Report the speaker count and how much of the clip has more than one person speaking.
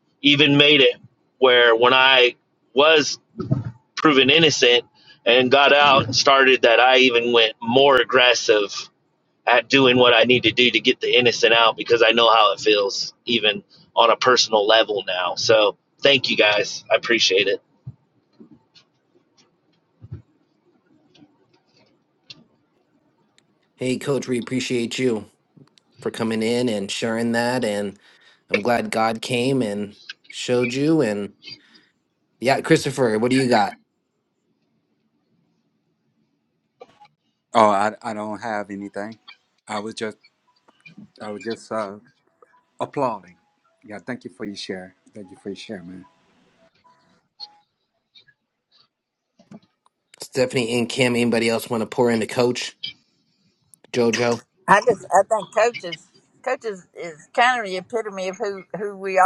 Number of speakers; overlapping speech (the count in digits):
4, no overlap